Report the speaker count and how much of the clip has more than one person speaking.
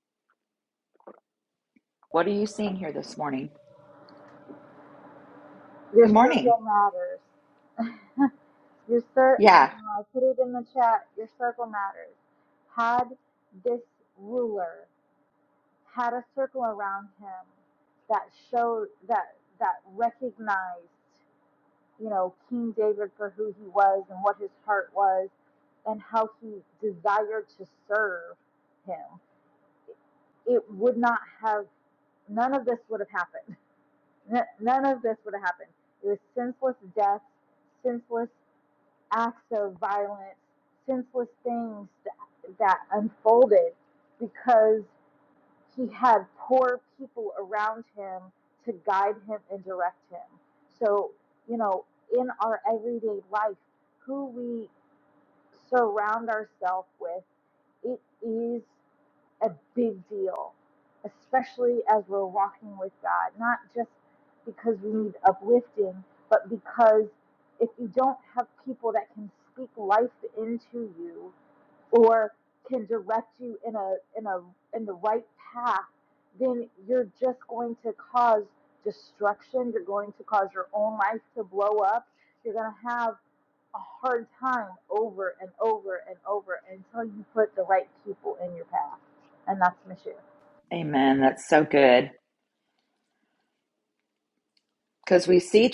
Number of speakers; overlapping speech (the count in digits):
2, about 1%